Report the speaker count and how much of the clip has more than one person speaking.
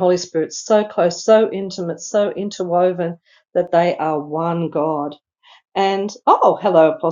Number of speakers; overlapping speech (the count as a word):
one, no overlap